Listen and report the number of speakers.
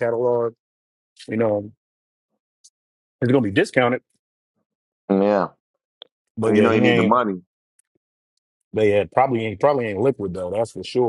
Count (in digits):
2